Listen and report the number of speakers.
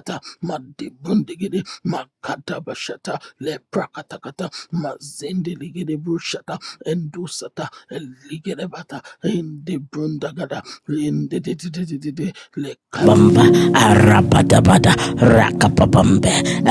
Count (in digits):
2